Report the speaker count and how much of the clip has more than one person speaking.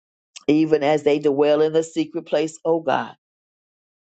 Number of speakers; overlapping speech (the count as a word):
one, no overlap